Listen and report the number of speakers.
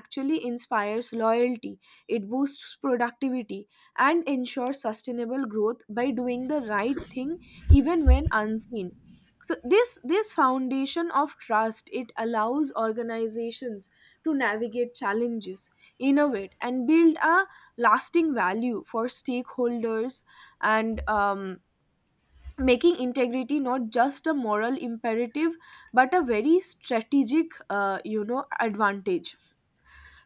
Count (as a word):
one